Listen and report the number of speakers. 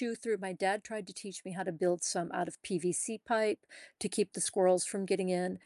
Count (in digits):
1